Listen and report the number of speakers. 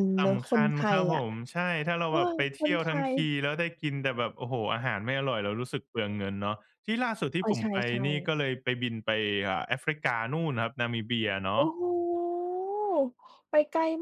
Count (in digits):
2